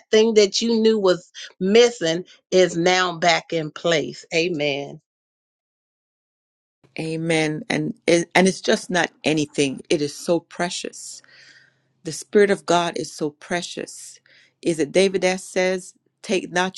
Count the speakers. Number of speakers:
two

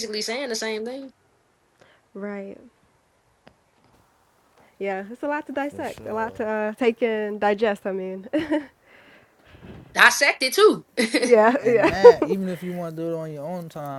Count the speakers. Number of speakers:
three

